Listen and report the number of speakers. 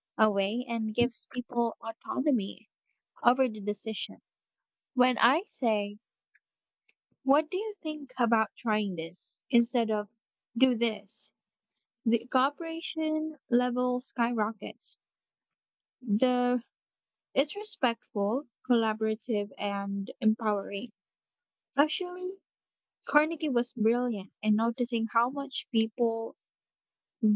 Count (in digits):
1